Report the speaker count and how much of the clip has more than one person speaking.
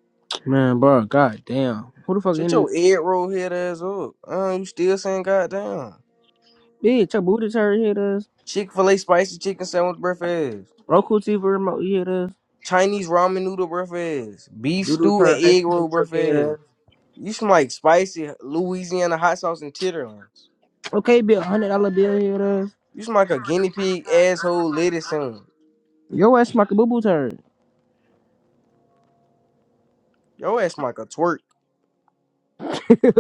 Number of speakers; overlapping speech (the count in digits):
2, about 6%